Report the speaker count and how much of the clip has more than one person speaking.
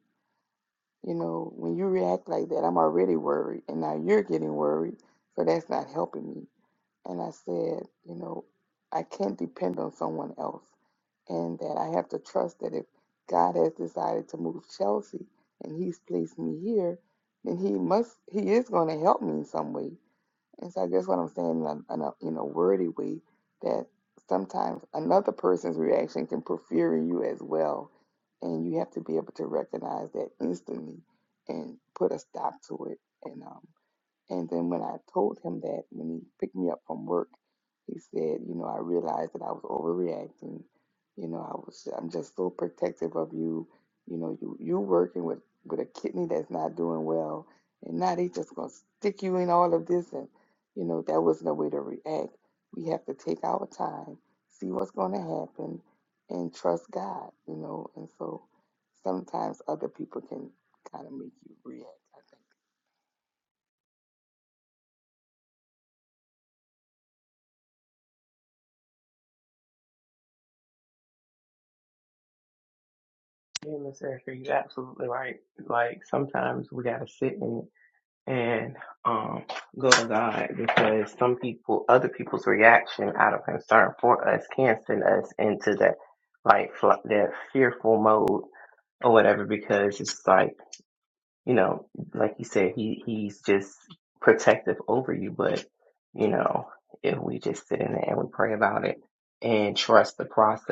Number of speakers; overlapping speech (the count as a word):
two, no overlap